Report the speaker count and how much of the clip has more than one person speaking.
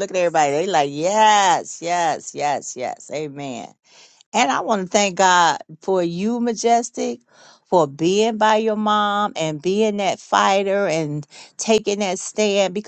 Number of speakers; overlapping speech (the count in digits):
1, no overlap